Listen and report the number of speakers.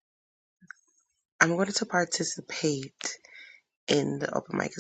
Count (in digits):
1